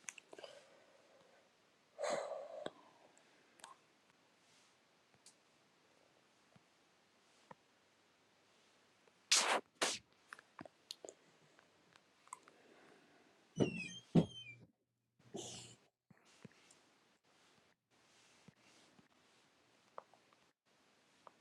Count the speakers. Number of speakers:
zero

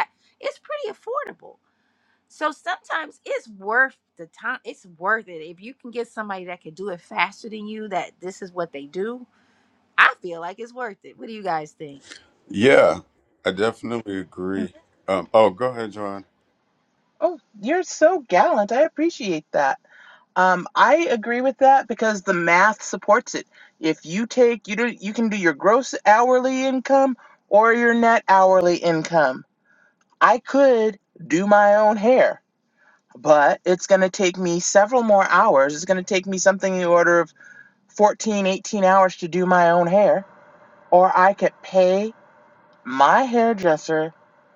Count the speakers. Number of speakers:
three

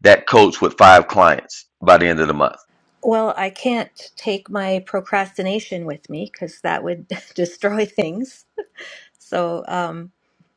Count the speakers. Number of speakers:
two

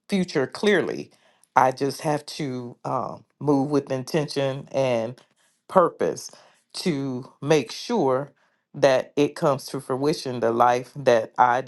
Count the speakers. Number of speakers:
one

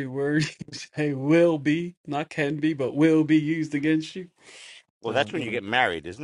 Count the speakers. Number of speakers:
two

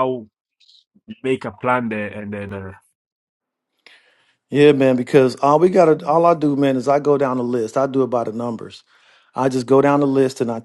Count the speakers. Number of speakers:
two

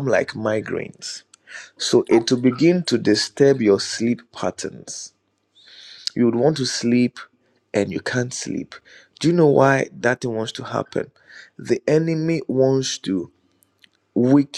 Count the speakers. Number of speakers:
one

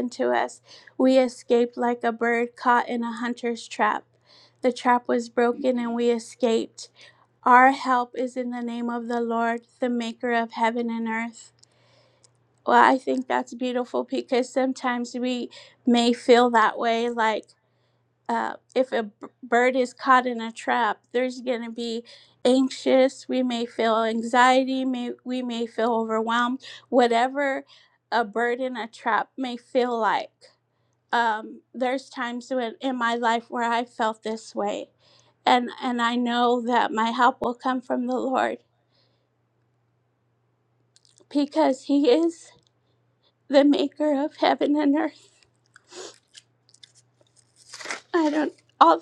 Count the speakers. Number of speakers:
one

